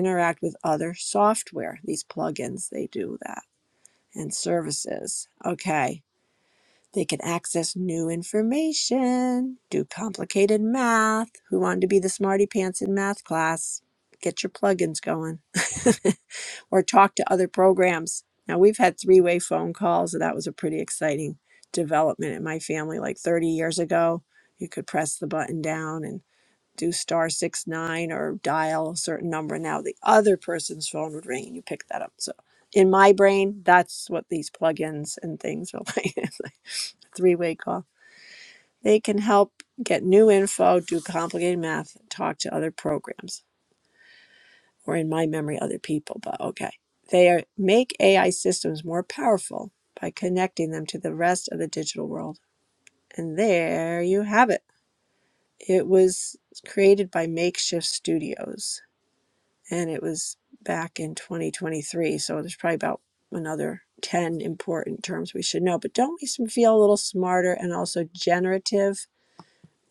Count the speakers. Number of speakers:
one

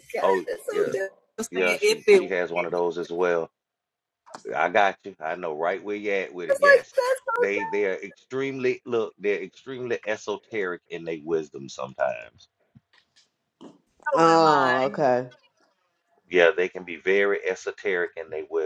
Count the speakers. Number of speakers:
three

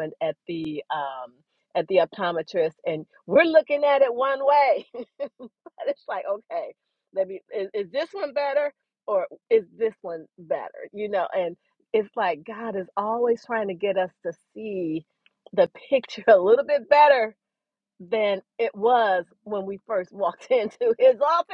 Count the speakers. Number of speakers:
one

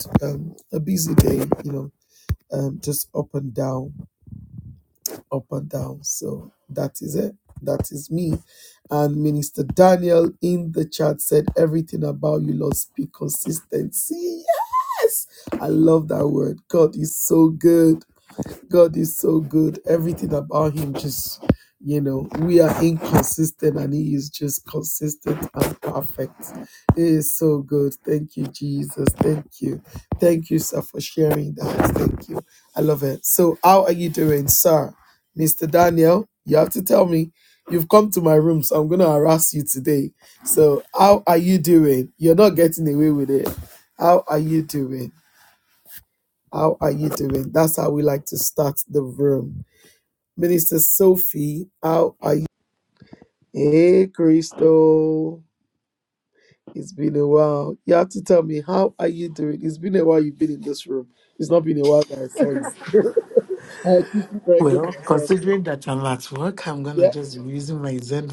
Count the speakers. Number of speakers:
two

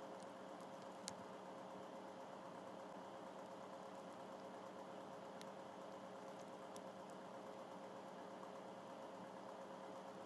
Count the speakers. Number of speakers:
zero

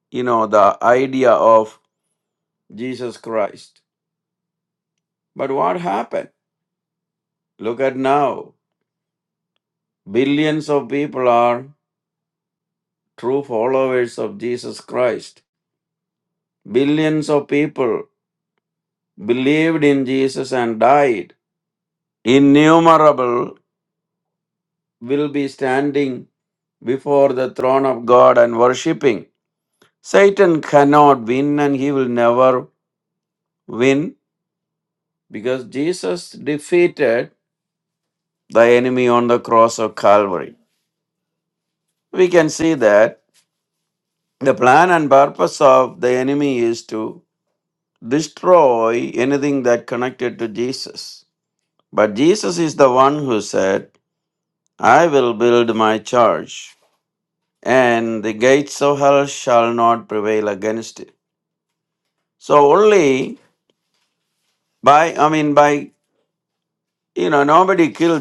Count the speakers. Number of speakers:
one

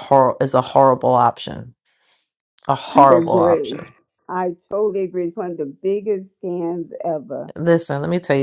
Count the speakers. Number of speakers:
two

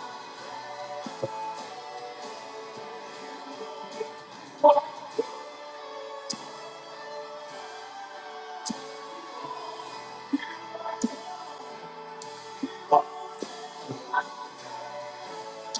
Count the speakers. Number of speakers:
zero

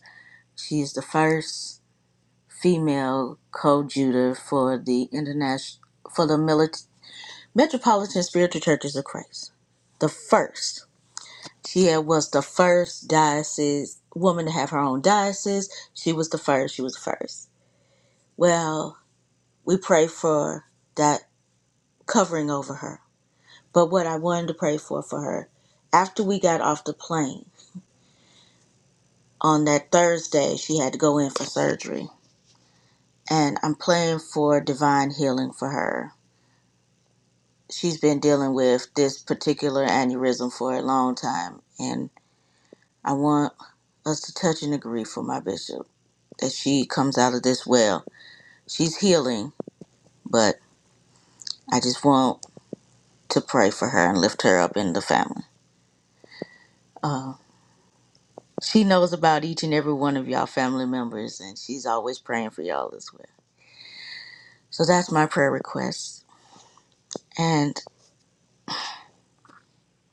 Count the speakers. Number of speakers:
one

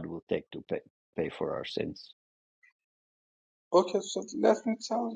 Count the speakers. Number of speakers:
two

